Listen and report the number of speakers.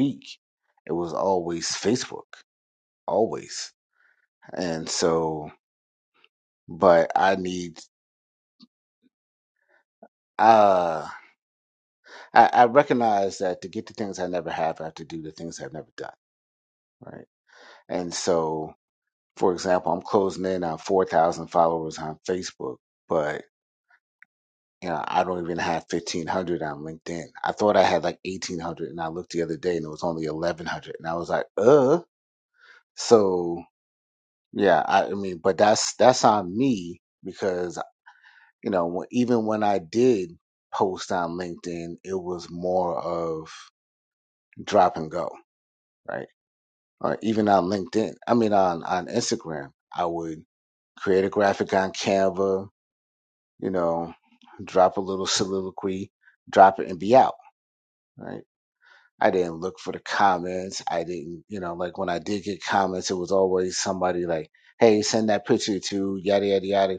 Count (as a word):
one